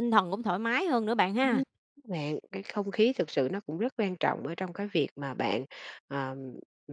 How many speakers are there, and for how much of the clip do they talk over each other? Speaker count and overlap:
two, about 3%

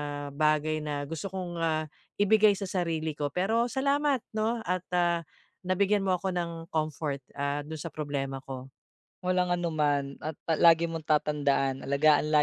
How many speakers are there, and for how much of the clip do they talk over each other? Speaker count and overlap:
two, no overlap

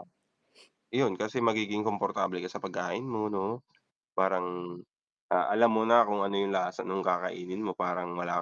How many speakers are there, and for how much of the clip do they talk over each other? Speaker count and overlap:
one, no overlap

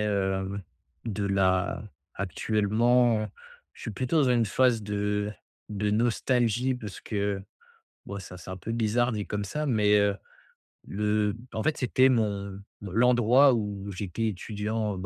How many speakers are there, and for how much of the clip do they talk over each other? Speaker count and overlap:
one, no overlap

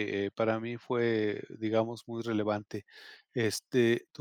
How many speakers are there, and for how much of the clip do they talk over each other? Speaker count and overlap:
one, no overlap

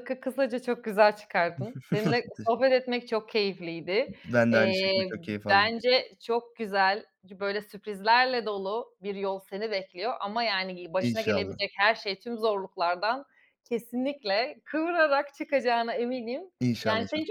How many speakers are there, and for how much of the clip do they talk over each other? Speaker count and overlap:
two, about 12%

